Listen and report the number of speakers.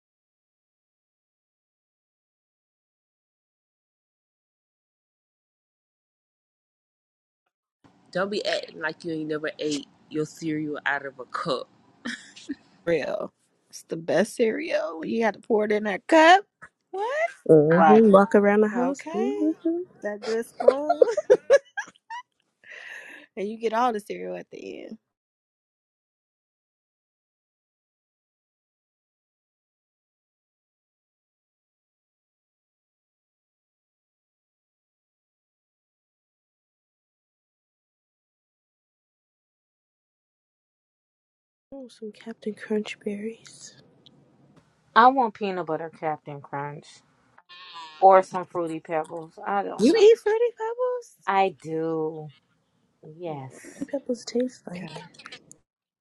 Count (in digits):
4